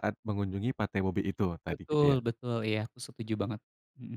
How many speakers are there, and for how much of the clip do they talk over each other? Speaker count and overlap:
two, about 12%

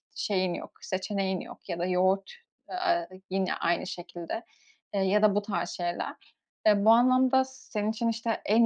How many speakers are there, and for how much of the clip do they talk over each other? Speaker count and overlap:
one, no overlap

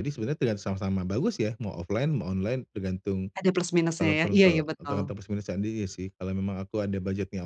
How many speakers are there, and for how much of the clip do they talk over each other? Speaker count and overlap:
two, about 15%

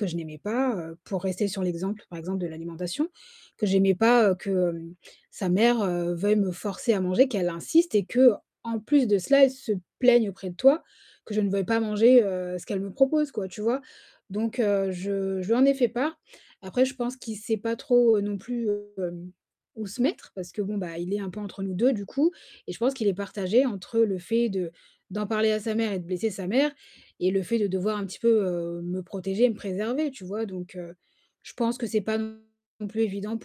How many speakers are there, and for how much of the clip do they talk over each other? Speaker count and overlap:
one, no overlap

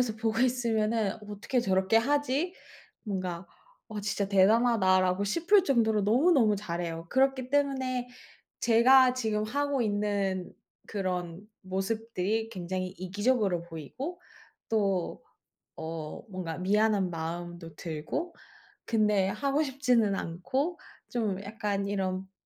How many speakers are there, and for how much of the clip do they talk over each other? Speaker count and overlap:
one, no overlap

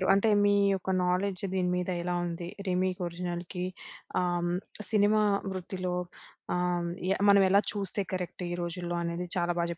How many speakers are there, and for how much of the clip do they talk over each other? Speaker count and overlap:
one, no overlap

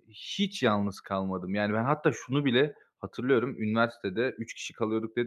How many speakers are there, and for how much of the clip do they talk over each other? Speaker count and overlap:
one, no overlap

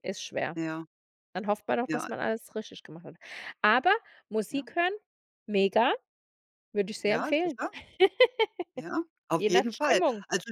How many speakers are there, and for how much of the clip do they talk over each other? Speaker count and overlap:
two, about 16%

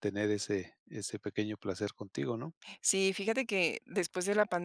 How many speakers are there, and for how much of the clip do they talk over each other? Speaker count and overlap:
two, no overlap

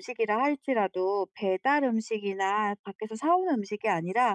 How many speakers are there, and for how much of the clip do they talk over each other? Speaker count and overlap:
one, no overlap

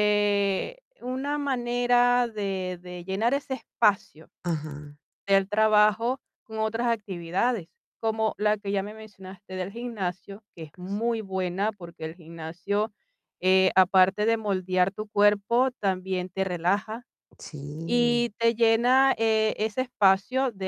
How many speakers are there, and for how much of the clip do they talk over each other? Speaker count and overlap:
two, about 2%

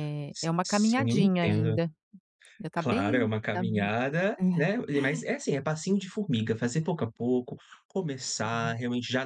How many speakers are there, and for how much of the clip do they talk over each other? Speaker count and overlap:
two, about 32%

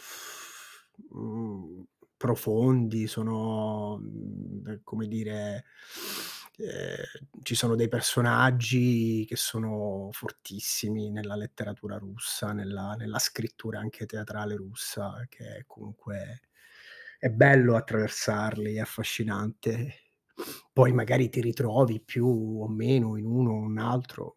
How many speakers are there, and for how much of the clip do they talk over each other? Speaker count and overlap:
one, no overlap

